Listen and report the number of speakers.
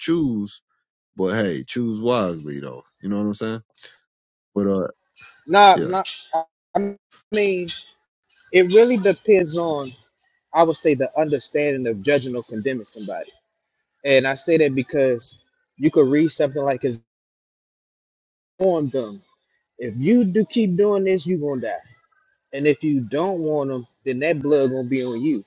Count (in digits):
2